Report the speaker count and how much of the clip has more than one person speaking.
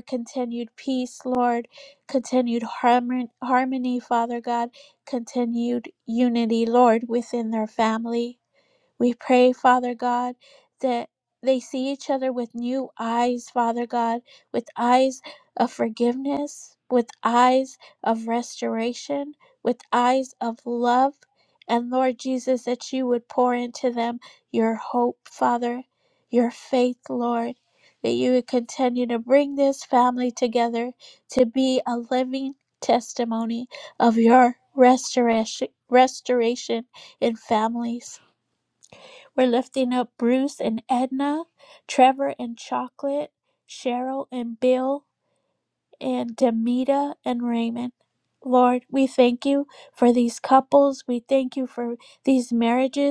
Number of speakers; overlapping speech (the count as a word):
one, no overlap